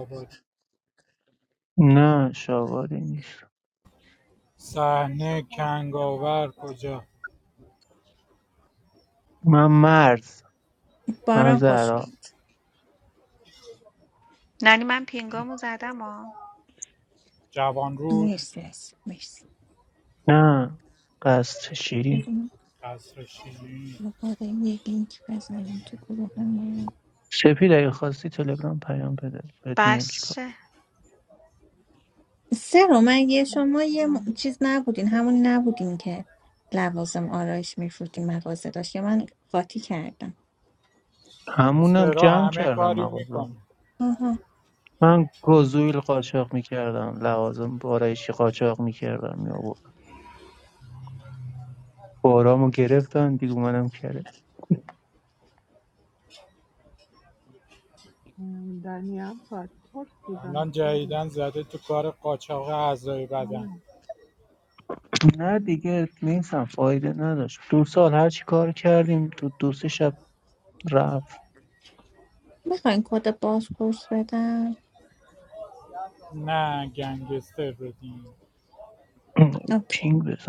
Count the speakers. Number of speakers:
5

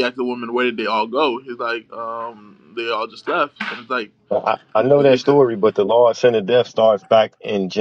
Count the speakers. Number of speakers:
2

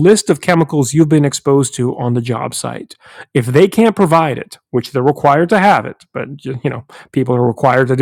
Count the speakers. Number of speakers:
1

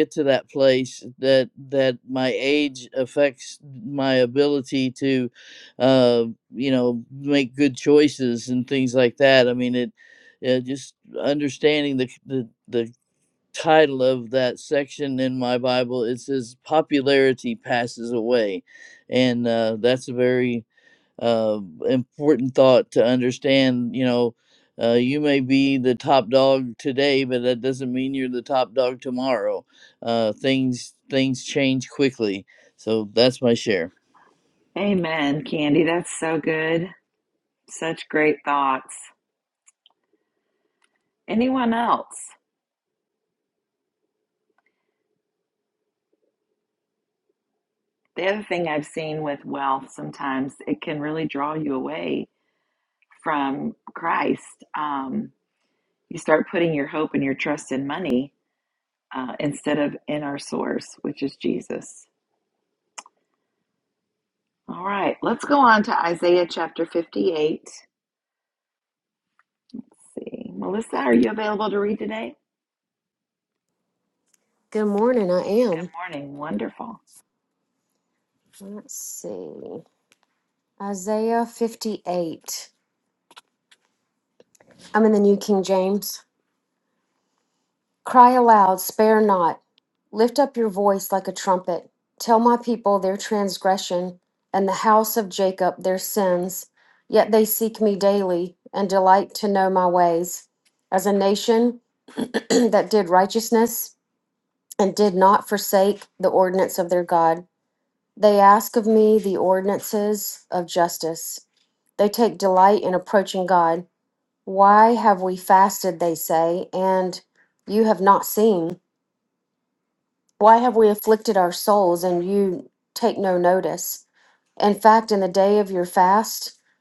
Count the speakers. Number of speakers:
3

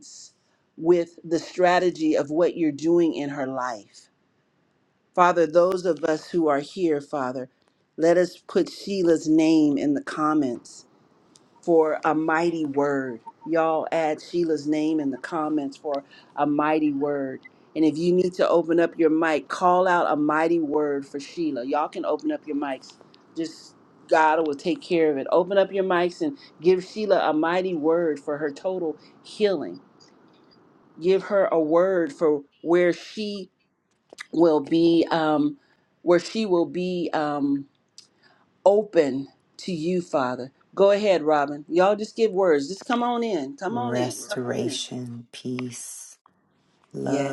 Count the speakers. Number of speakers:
2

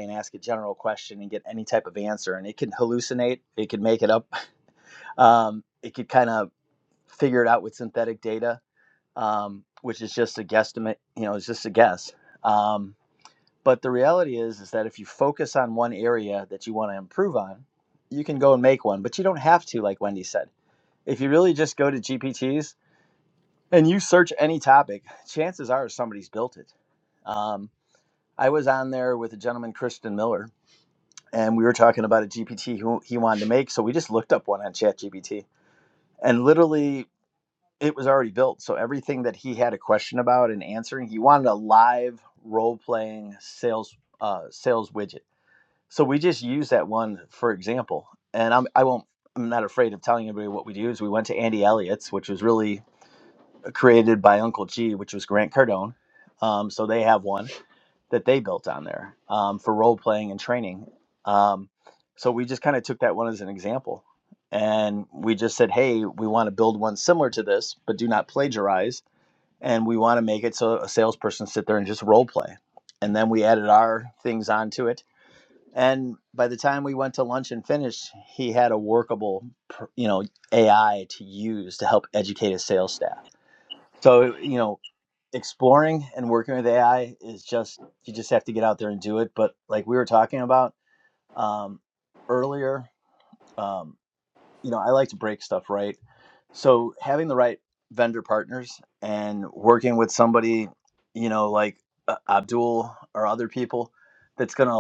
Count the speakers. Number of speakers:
1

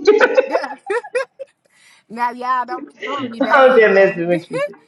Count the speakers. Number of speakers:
2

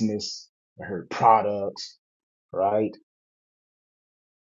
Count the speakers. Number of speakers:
1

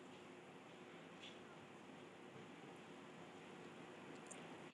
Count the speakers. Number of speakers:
0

